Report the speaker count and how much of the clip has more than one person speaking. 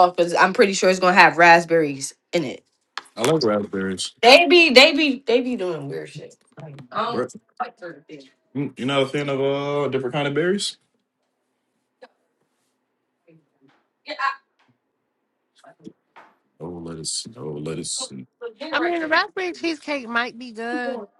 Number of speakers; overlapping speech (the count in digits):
3, under 1%